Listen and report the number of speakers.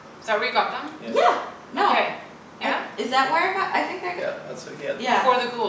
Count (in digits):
3